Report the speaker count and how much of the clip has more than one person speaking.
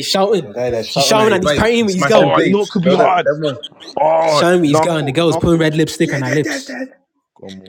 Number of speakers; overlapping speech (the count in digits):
3, about 56%